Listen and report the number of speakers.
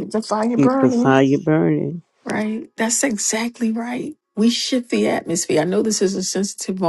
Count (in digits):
3